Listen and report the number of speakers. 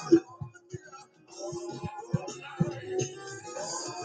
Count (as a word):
zero